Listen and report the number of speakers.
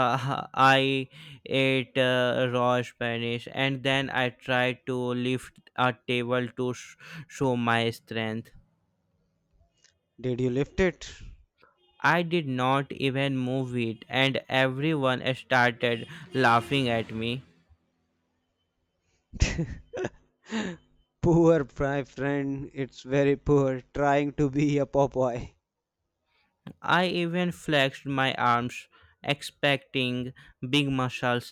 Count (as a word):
two